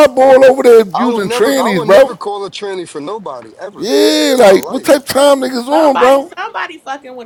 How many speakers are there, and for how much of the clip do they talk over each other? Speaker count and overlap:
three, about 33%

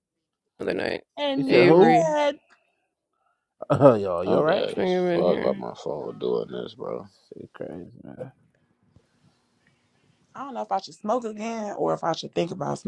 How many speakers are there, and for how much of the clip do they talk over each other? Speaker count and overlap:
four, about 15%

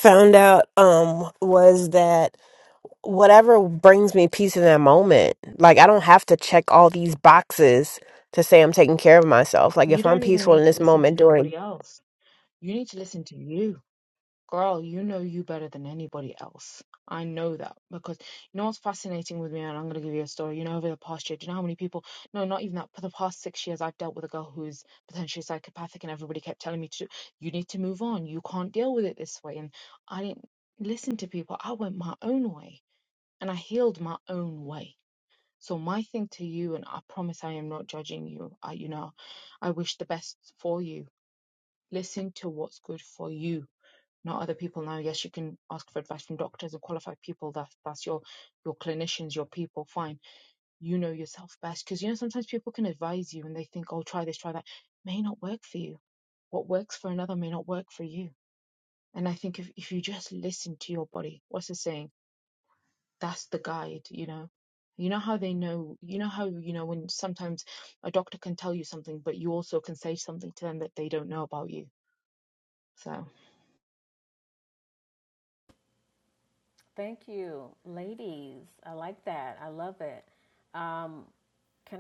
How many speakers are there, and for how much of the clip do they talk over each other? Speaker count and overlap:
three, about 2%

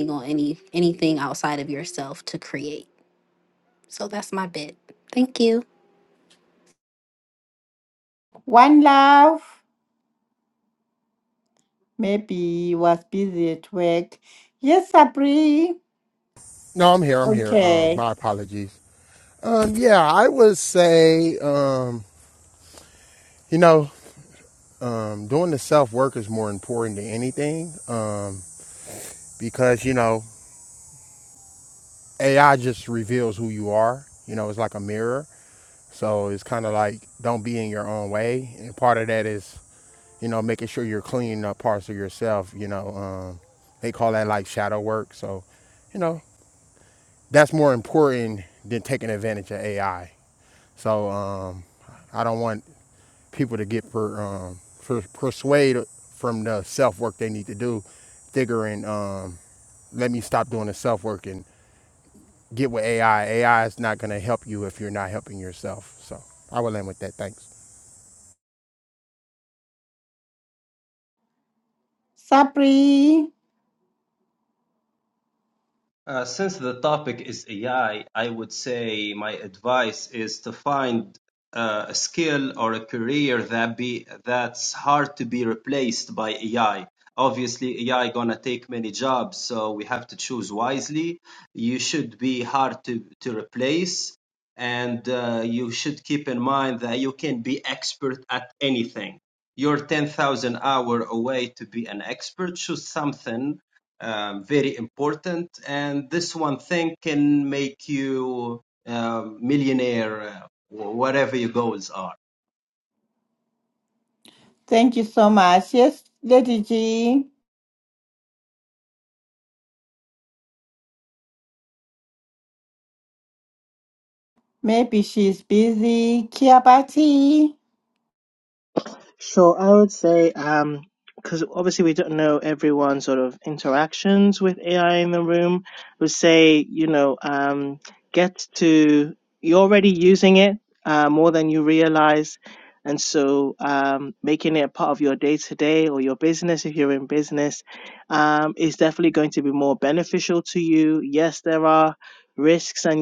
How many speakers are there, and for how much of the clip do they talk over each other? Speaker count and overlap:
five, under 1%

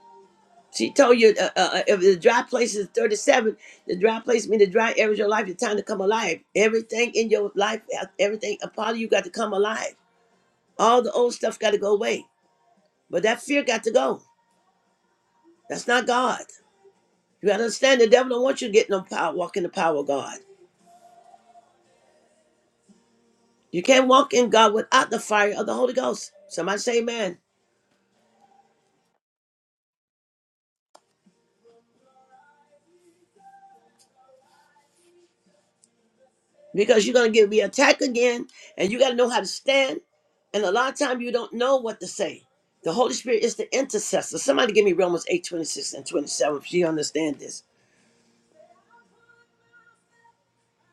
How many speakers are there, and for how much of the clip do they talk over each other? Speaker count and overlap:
one, no overlap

